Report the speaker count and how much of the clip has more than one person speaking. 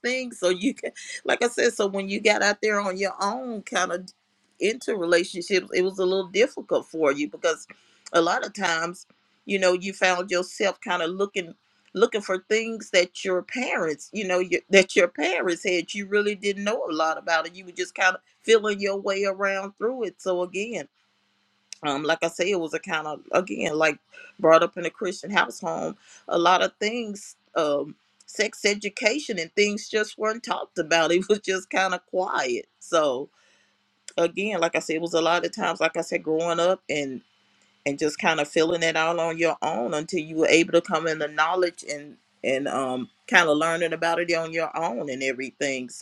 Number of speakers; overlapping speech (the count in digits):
1, no overlap